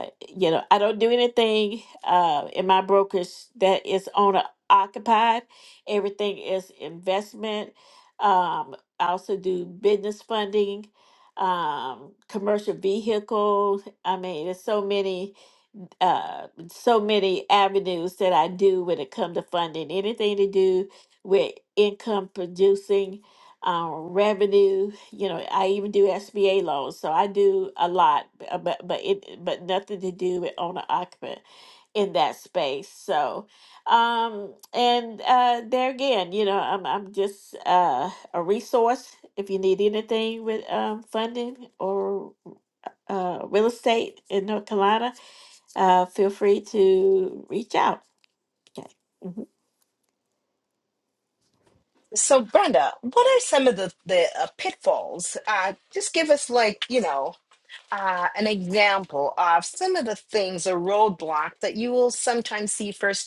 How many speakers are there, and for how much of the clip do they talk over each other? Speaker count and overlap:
two, no overlap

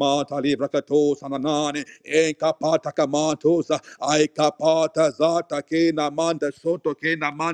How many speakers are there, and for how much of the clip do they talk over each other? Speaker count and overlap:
one, no overlap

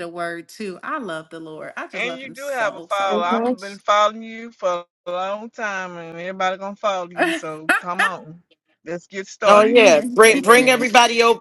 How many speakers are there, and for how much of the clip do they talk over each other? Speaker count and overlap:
three, about 26%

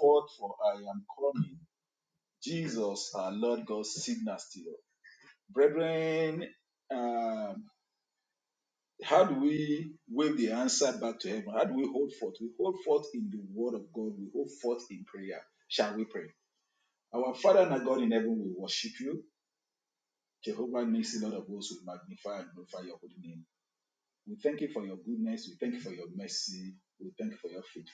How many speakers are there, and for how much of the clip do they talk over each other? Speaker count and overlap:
one, no overlap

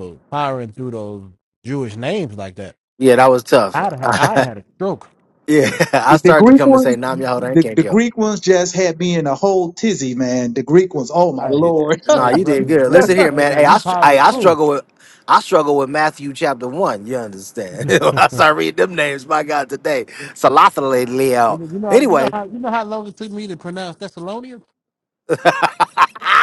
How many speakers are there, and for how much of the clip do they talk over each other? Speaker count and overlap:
three, about 18%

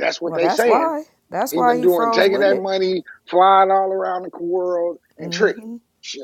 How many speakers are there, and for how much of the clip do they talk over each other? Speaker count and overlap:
two, about 34%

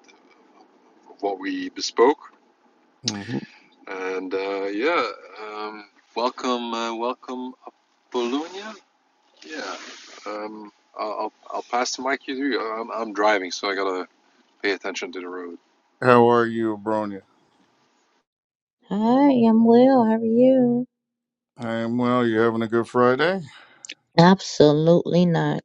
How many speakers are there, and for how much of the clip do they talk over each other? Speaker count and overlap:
three, no overlap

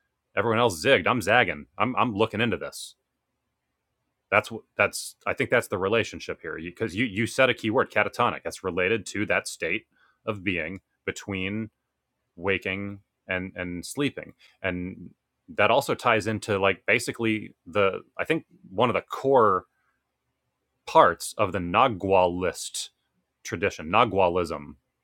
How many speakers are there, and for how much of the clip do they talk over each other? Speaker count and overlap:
one, no overlap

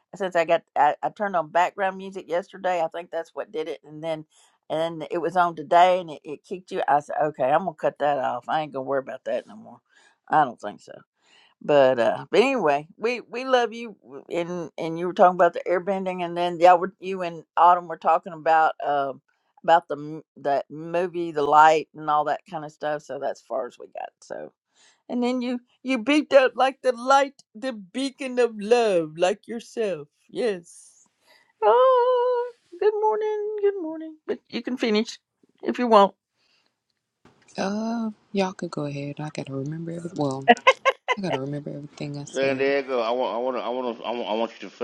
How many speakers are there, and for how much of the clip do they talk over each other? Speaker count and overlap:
three, about 1%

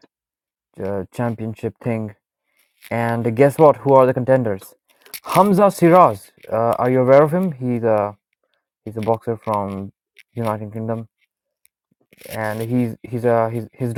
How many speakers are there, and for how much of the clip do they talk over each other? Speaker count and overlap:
one, no overlap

